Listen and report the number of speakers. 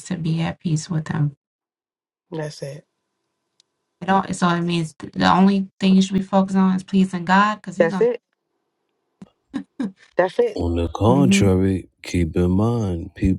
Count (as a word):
three